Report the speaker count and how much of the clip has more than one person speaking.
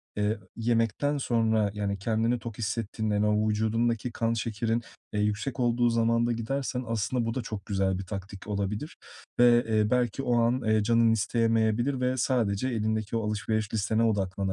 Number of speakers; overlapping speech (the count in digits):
1, no overlap